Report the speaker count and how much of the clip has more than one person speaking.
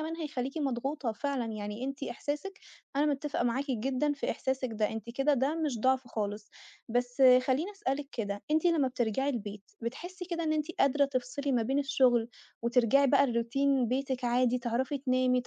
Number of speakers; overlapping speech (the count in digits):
1, no overlap